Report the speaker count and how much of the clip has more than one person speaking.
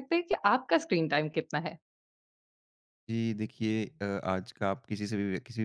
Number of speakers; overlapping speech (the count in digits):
2, no overlap